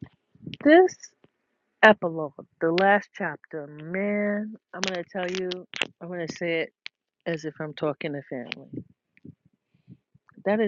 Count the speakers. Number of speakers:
1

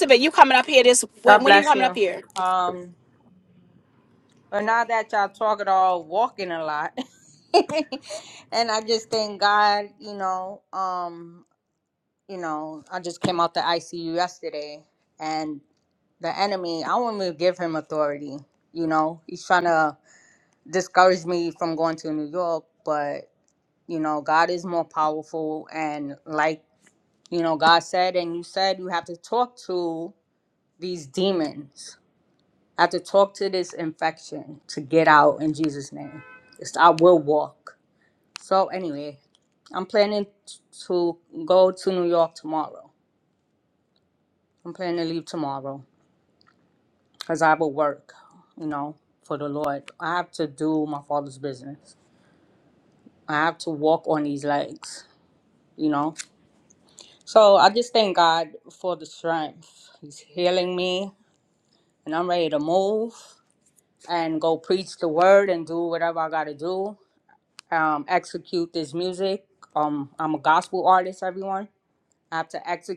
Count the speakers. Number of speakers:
2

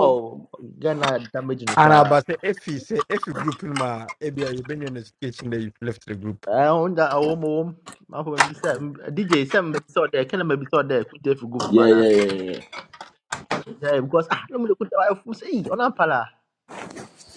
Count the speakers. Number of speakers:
3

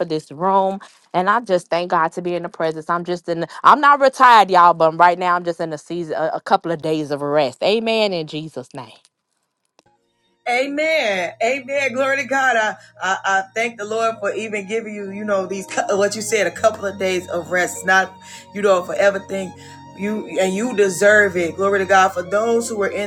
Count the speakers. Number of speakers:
2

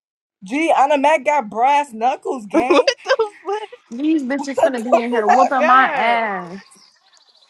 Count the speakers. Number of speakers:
3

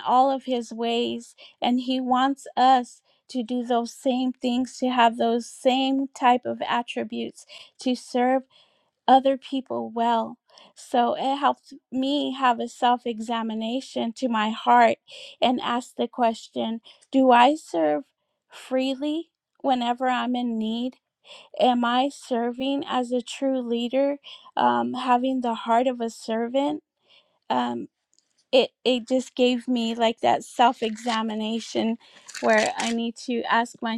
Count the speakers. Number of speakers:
1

